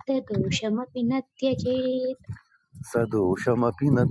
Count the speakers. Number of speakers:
two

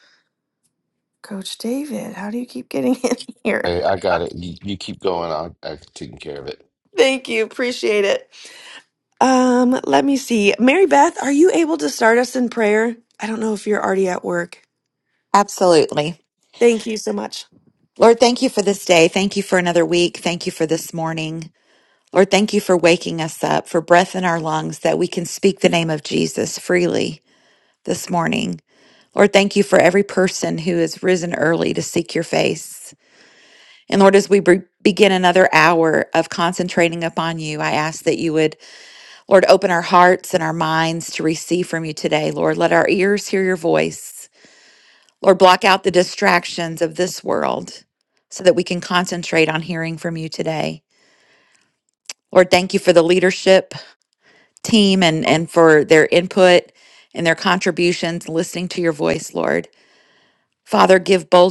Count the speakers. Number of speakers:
three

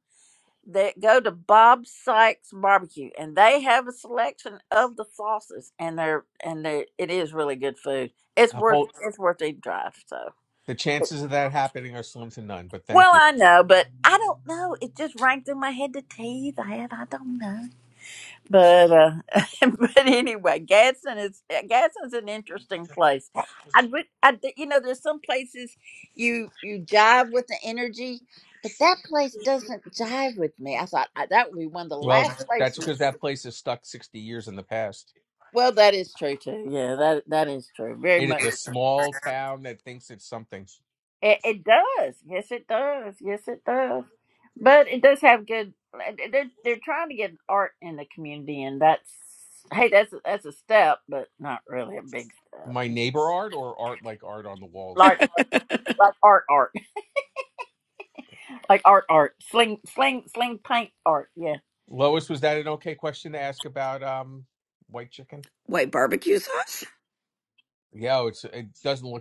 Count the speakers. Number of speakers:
three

